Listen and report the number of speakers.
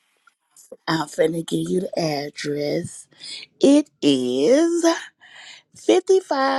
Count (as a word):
one